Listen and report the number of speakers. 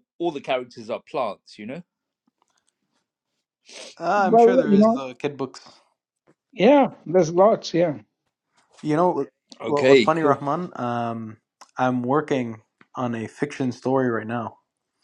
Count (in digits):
3